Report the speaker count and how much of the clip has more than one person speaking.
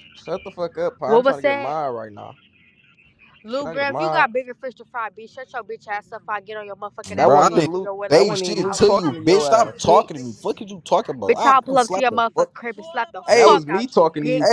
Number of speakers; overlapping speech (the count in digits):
3, about 47%